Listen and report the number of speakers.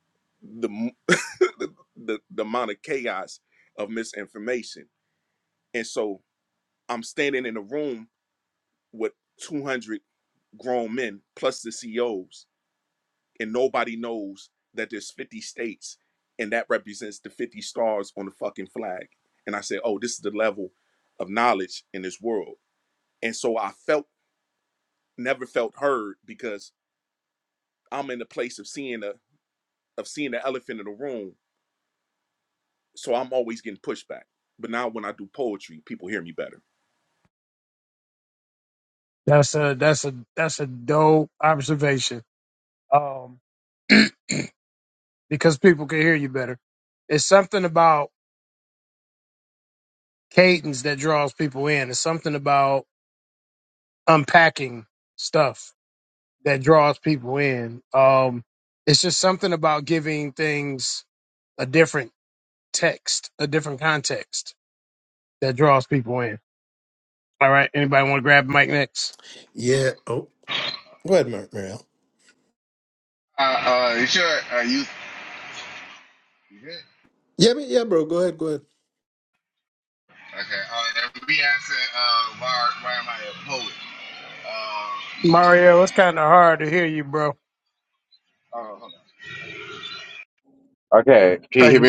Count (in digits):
4